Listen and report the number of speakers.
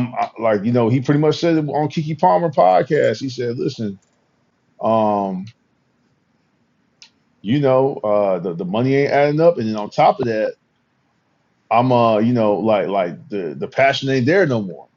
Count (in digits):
1